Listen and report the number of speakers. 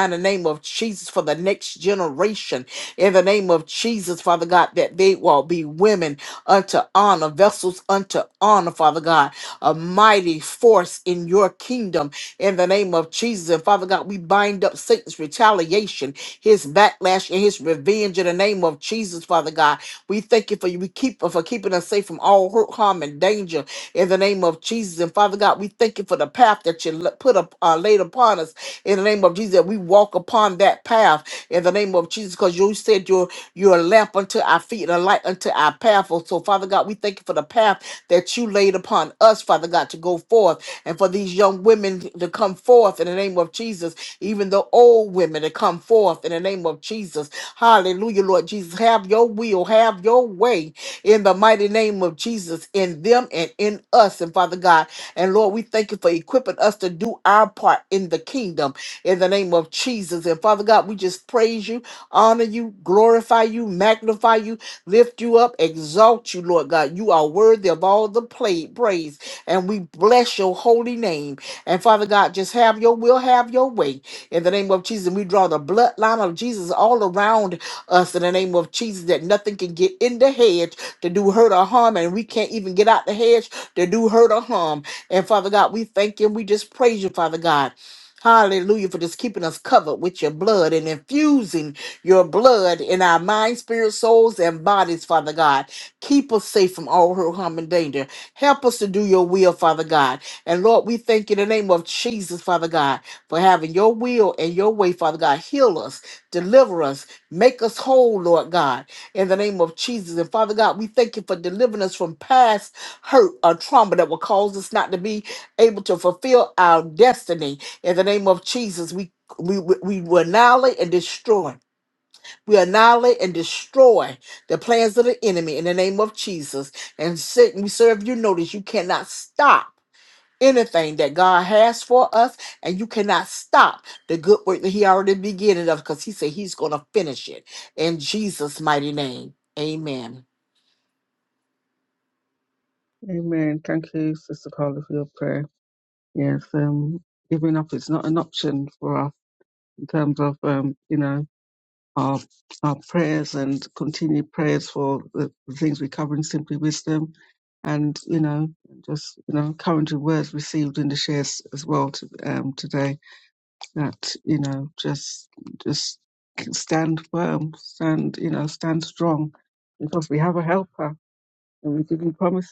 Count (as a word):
two